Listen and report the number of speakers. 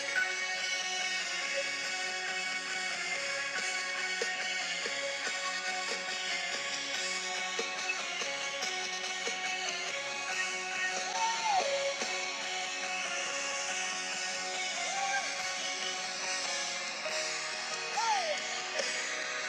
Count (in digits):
0